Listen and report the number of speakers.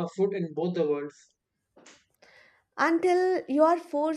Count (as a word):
two